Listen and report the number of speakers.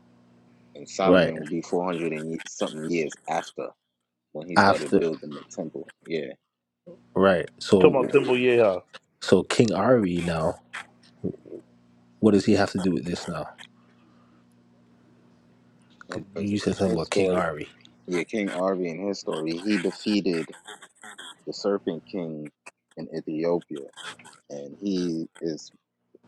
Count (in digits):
3